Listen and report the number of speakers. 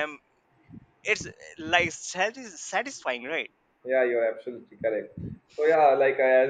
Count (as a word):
two